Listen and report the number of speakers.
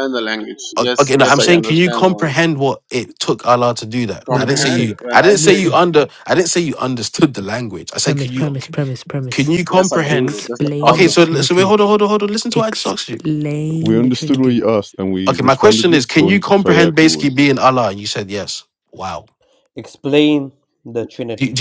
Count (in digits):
5